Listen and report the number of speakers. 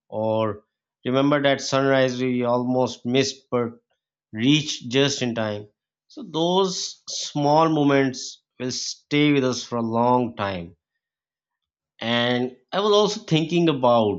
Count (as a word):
one